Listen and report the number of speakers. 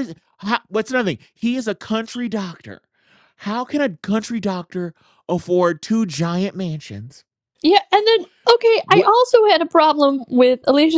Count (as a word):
two